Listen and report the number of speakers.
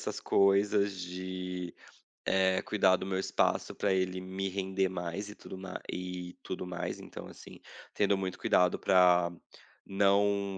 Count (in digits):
1